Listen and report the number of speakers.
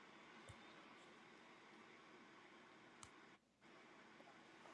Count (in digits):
0